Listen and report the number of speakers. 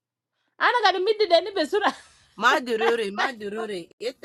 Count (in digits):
2